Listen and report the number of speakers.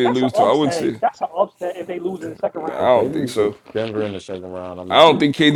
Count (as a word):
three